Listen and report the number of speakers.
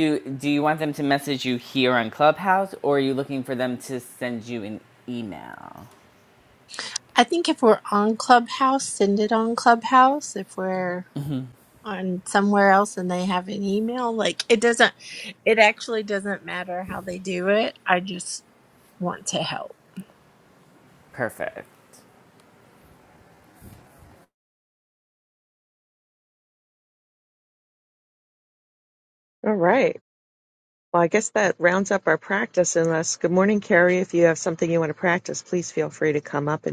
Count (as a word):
three